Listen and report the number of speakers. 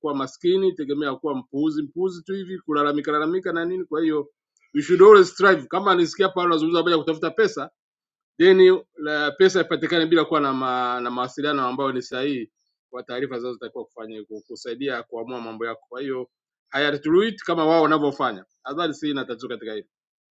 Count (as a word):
one